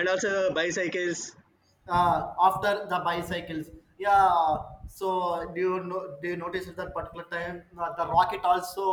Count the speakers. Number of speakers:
two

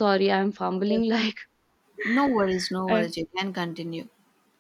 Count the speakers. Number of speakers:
two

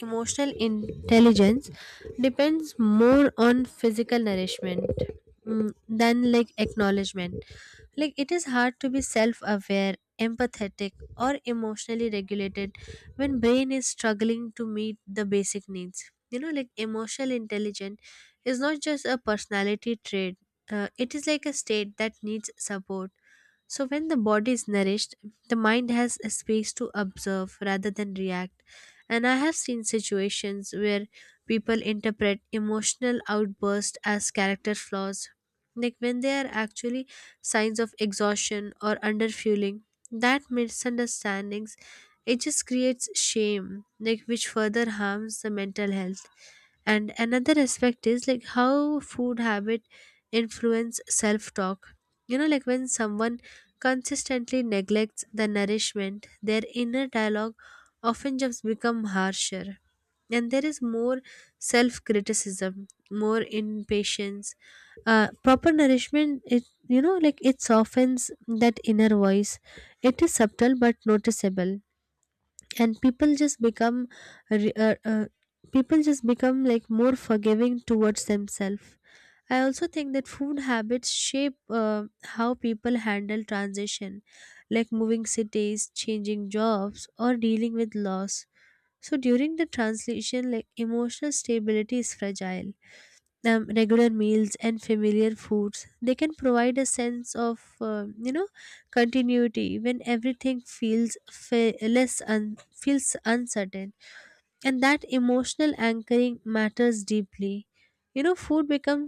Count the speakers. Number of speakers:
one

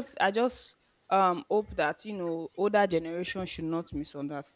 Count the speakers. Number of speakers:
one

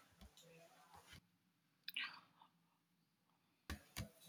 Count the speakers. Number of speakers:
zero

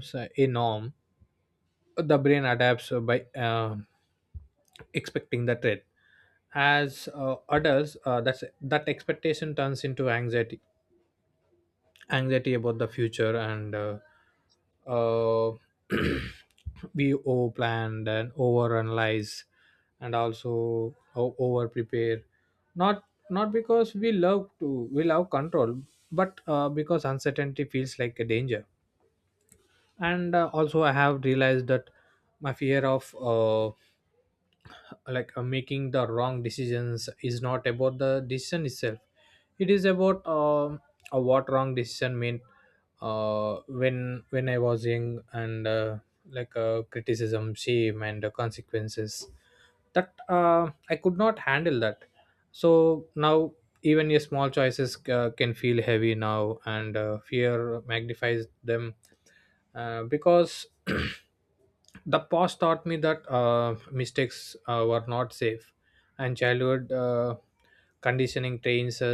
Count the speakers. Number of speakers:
one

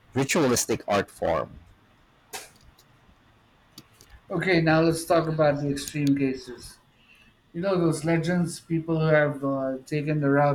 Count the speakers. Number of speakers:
two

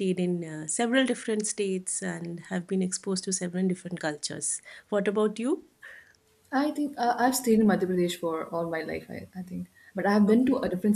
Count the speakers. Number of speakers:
two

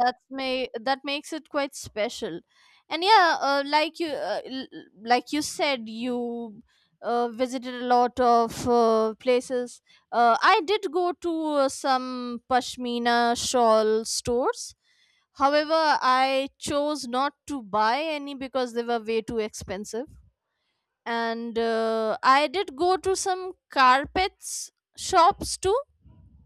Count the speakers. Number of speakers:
one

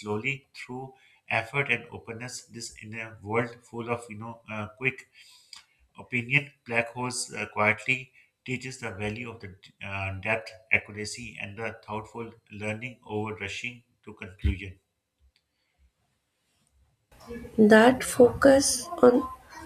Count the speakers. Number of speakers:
two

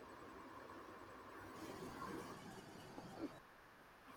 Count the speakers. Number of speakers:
zero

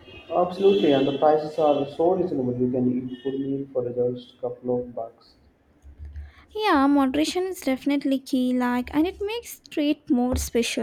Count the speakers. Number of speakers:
two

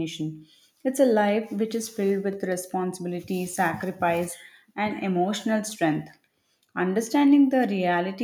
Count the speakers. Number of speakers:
one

